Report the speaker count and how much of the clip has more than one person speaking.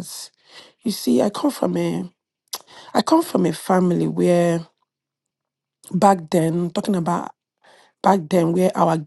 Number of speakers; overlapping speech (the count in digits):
1, no overlap